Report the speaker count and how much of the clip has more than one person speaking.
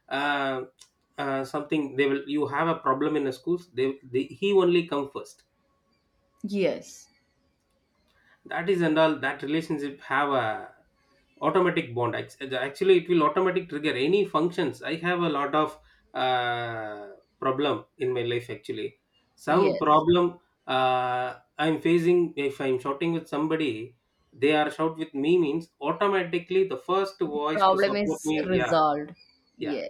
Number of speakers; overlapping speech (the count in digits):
2, about 7%